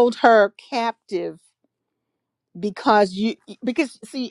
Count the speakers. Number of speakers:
one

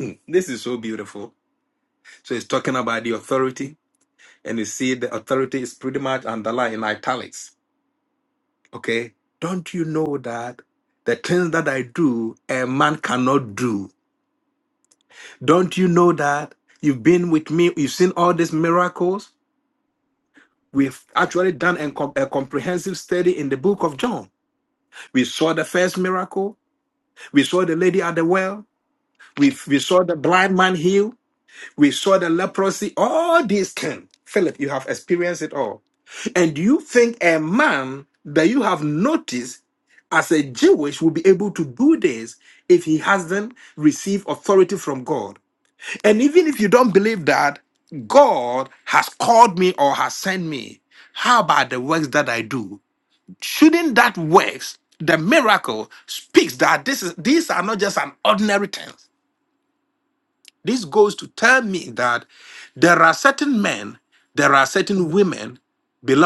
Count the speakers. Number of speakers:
one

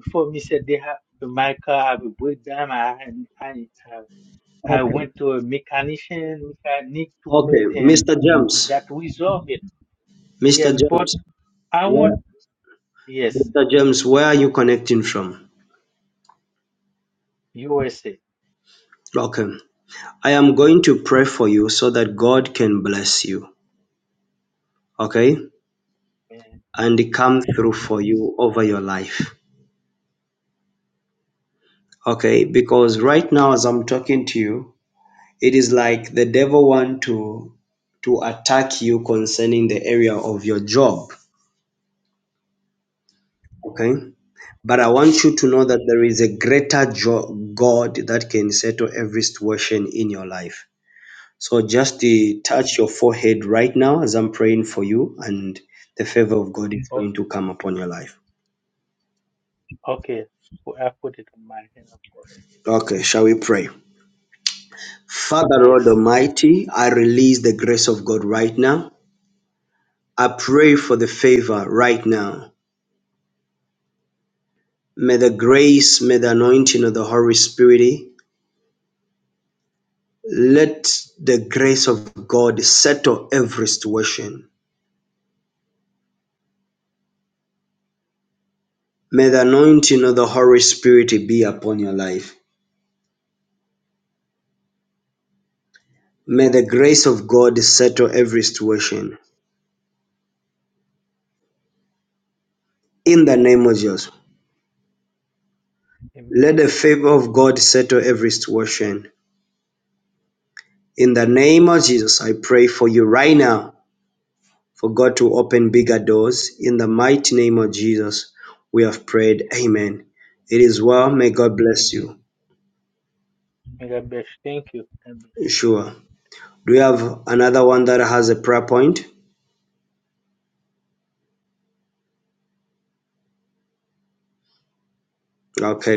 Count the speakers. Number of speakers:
two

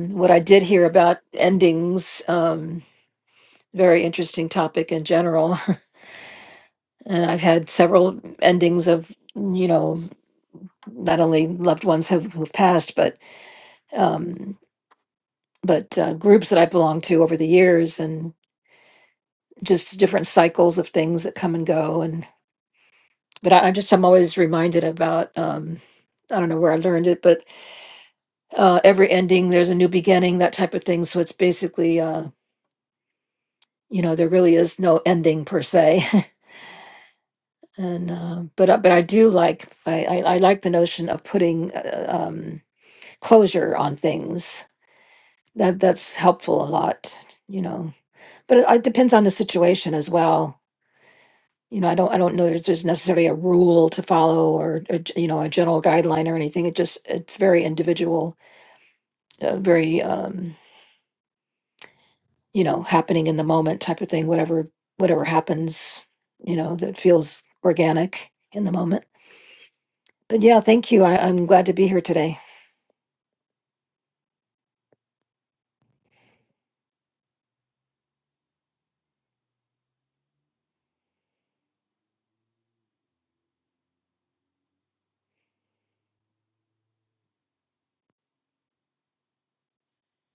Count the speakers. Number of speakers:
one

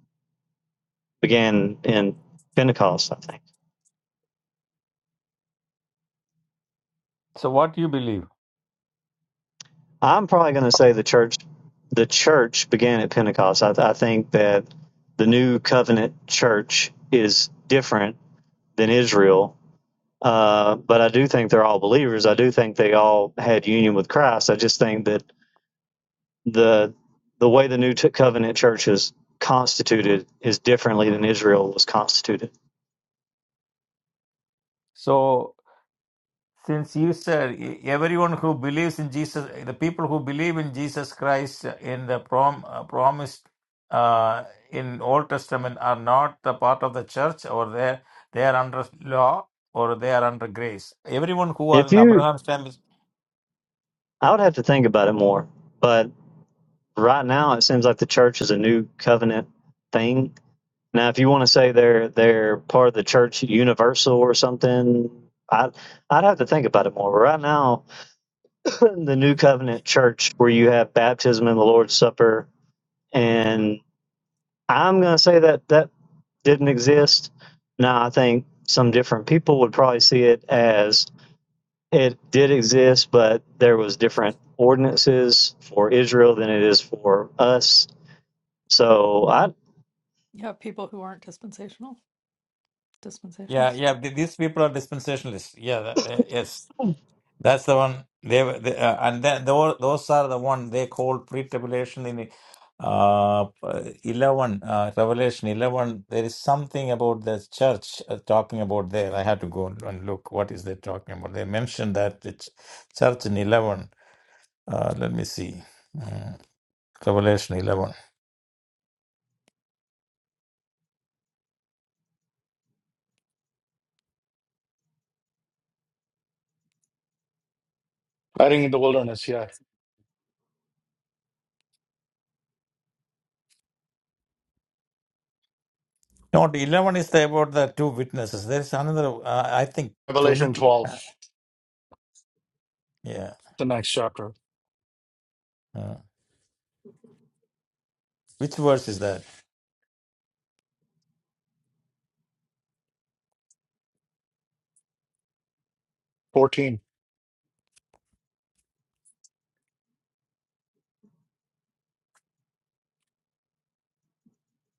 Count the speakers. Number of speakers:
four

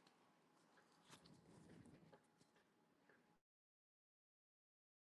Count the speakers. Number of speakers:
zero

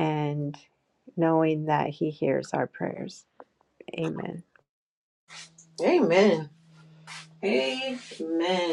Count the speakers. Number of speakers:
two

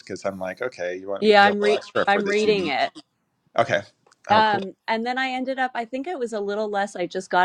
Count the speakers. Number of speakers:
two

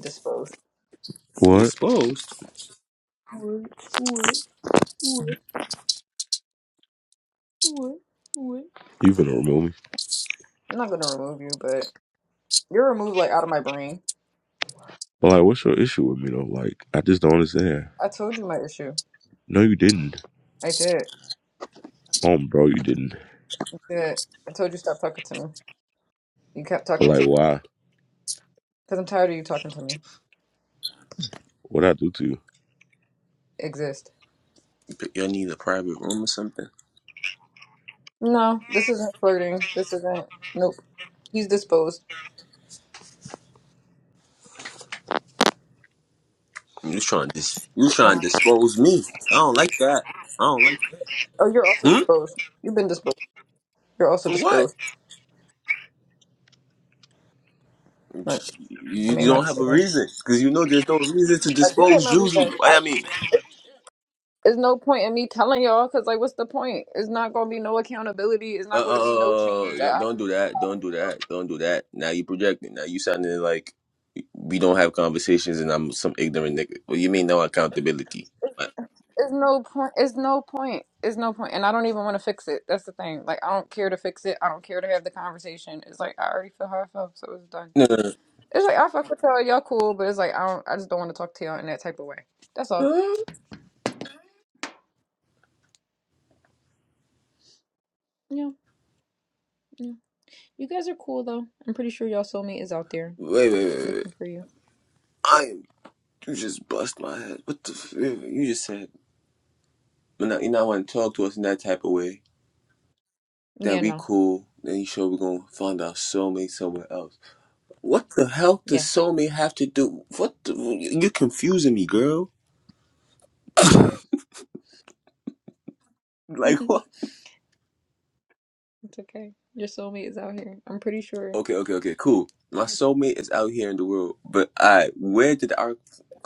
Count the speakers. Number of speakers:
three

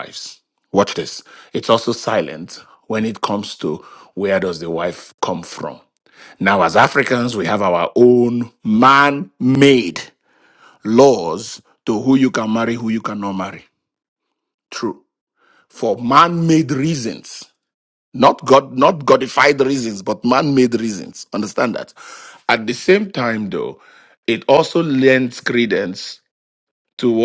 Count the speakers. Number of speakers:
one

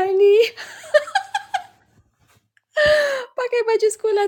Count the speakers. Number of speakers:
one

